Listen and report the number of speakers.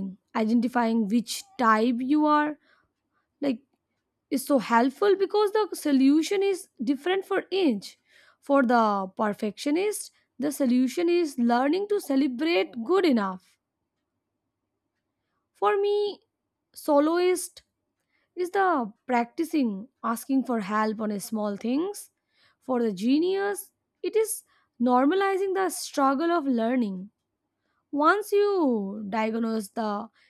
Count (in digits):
1